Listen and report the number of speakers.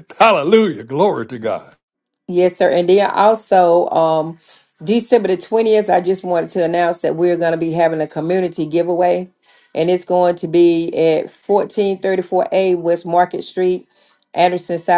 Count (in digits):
2